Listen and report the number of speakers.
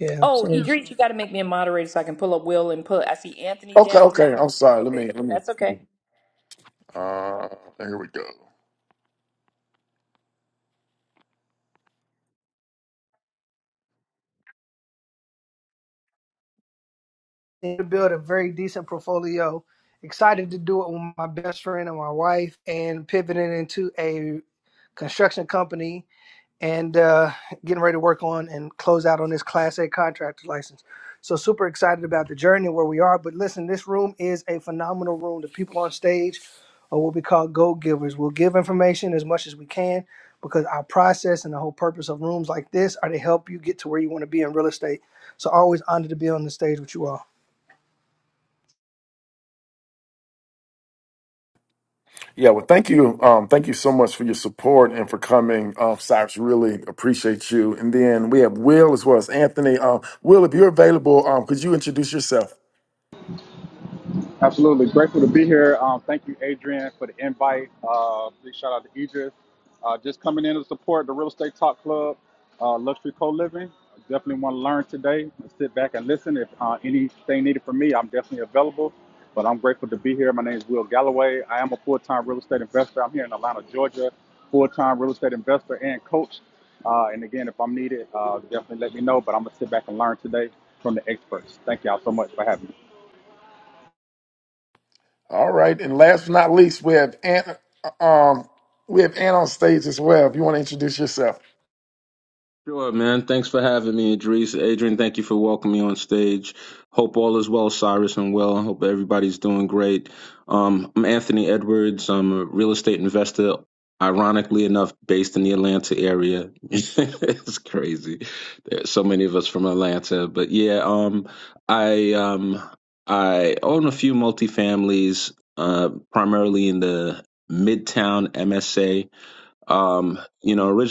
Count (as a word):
five